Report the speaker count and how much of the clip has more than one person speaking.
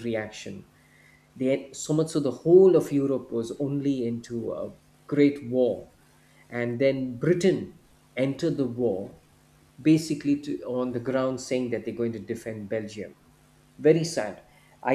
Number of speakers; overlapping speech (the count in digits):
1, no overlap